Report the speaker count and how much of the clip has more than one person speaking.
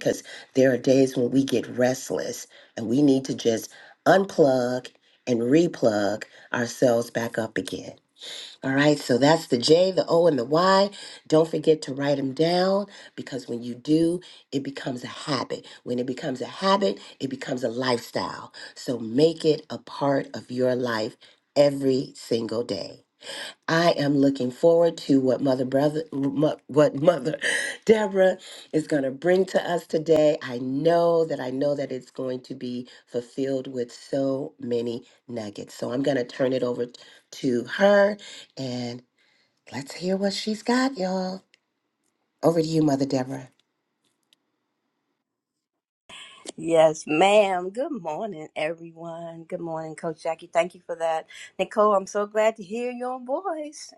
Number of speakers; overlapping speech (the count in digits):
2, no overlap